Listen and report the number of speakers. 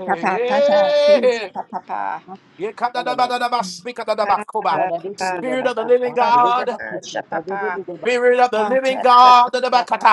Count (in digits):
3